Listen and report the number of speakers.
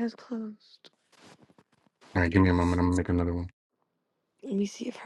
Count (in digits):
2